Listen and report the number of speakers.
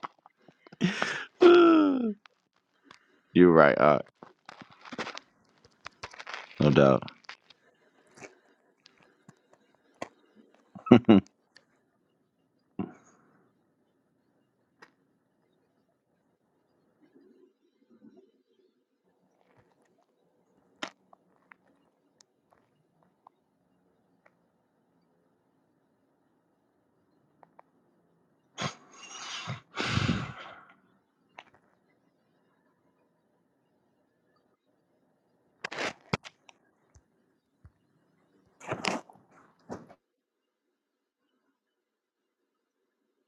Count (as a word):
one